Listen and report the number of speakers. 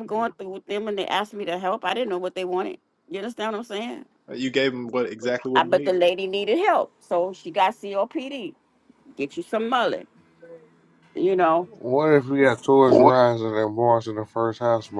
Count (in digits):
3